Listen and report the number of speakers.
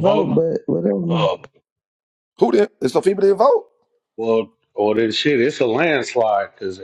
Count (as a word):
three